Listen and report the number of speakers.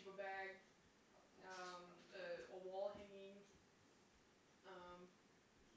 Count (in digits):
1